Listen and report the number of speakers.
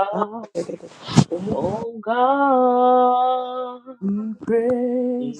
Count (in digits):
2